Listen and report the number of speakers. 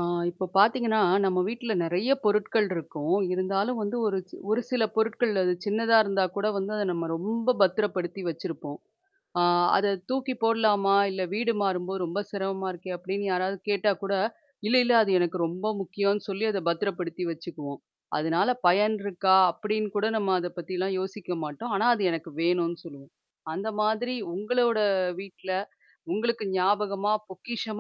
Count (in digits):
1